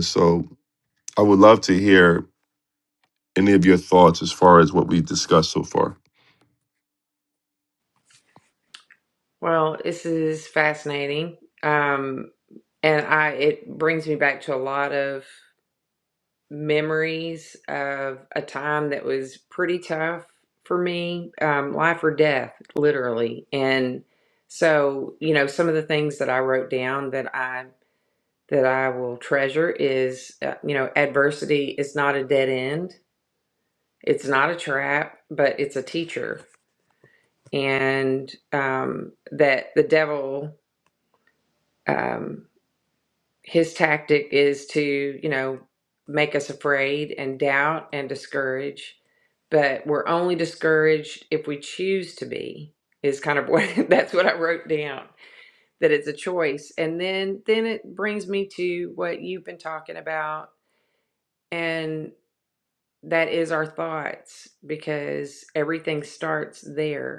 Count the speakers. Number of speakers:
2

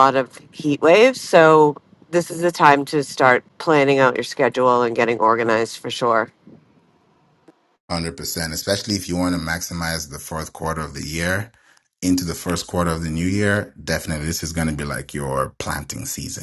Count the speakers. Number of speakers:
2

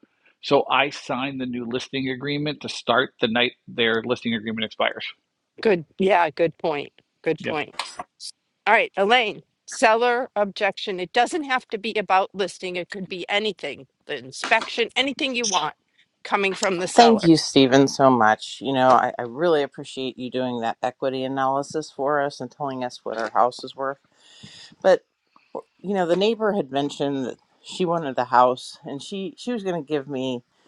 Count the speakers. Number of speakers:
3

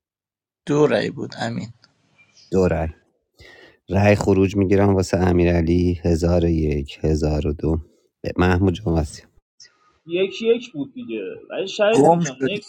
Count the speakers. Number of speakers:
3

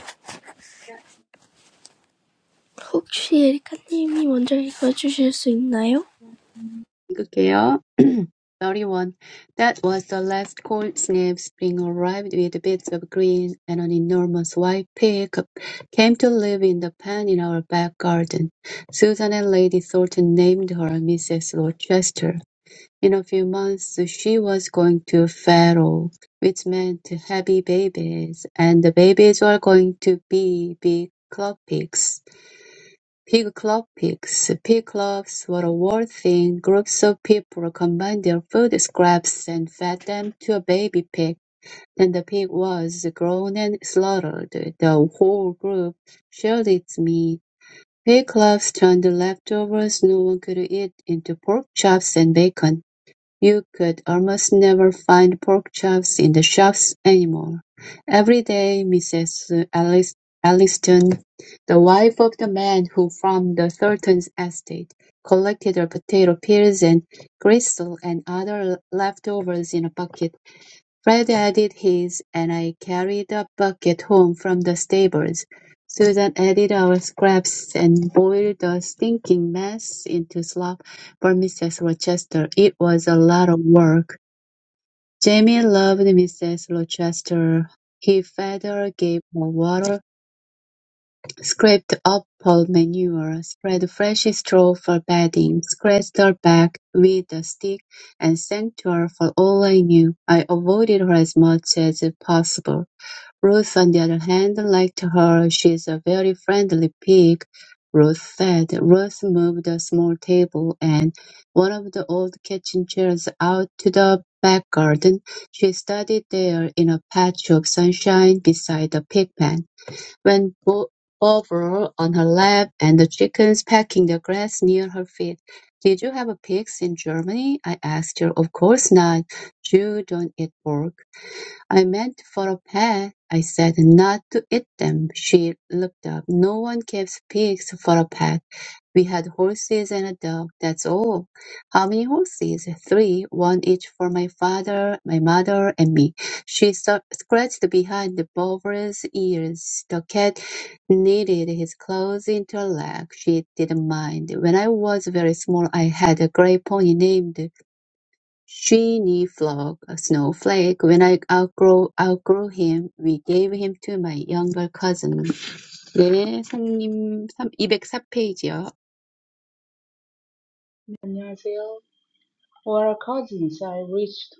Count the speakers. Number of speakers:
3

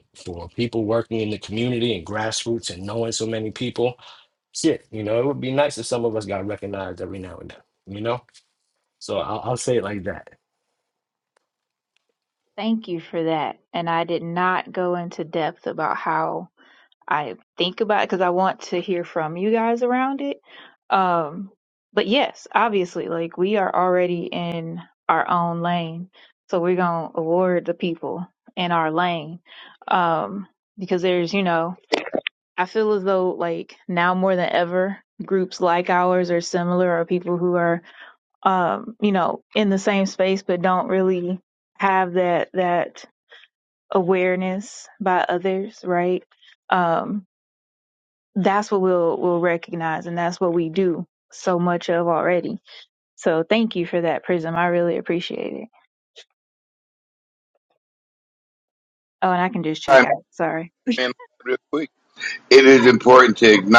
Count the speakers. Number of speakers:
3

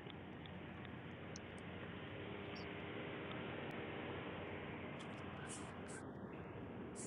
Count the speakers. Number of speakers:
0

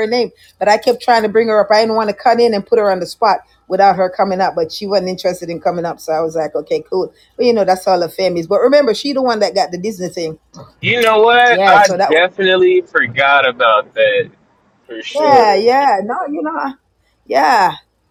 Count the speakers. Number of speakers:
2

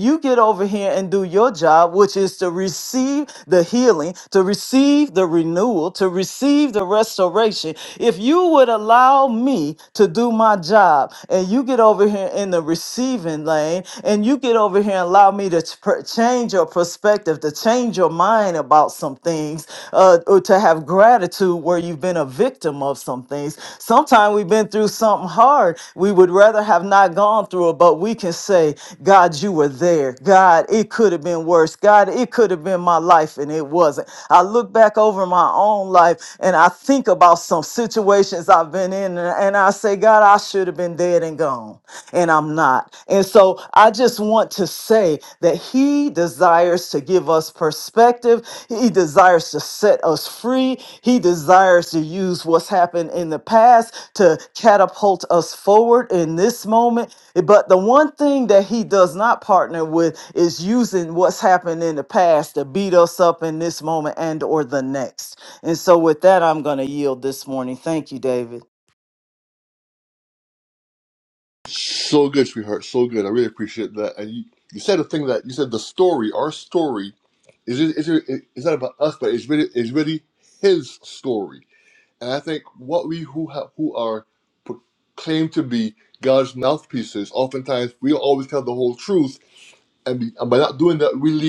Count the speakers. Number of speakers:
2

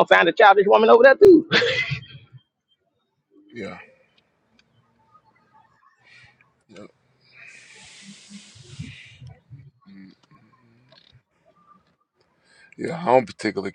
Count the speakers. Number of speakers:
2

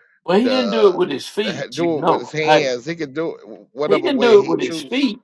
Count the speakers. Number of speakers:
2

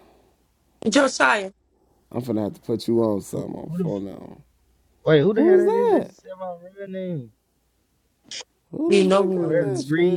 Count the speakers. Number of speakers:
3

